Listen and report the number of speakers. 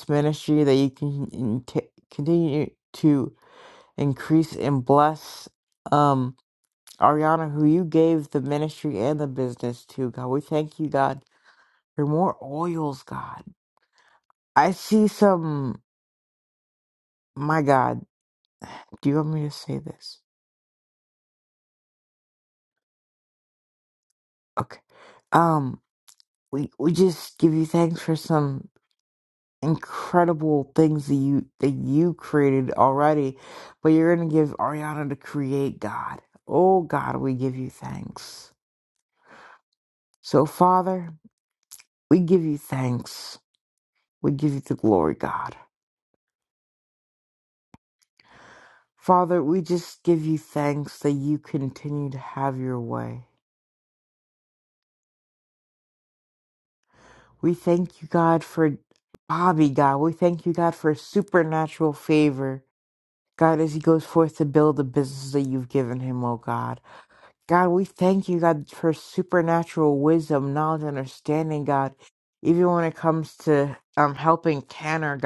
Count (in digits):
1